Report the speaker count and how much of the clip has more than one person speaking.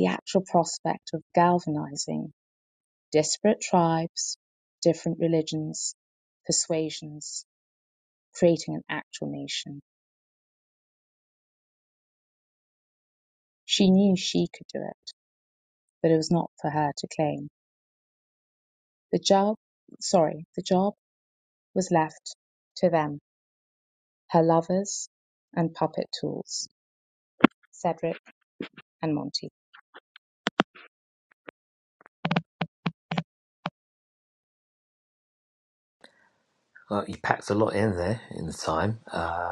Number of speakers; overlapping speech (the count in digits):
2, no overlap